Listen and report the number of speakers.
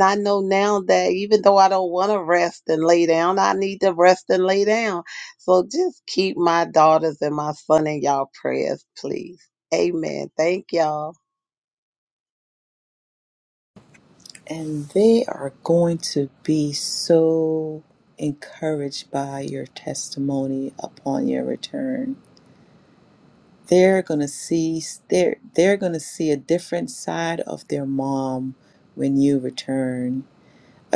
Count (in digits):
2